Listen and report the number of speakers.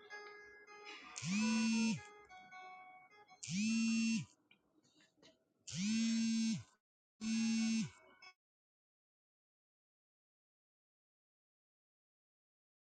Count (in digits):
0